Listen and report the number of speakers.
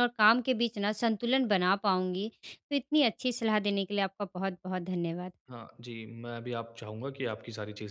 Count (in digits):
2